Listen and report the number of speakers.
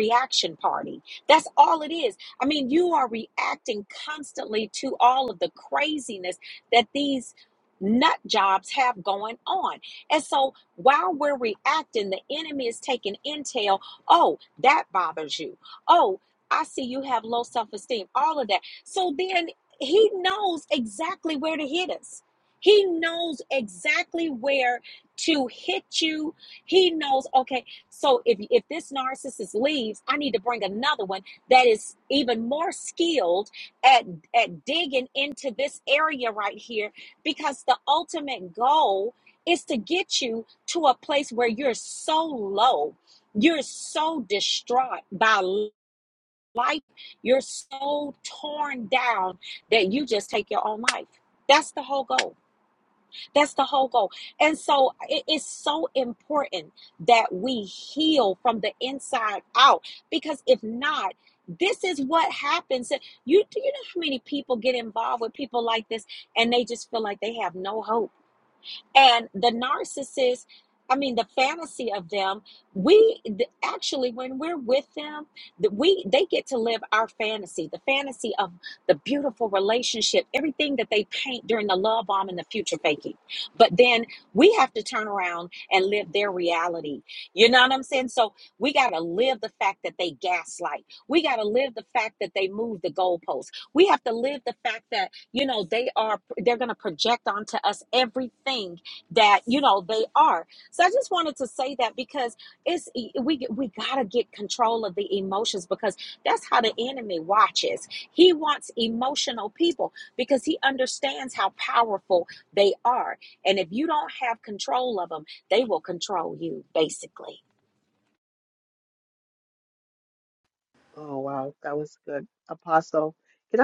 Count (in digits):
2